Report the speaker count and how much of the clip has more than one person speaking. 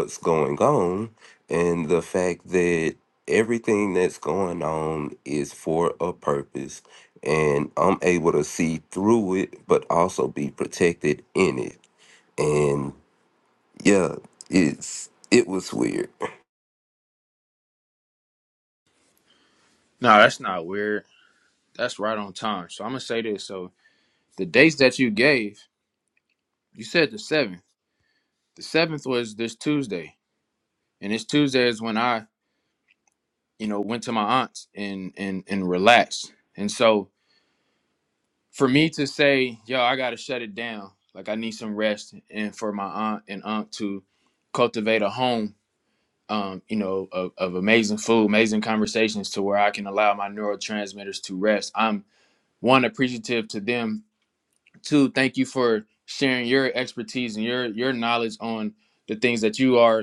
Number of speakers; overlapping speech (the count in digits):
2, no overlap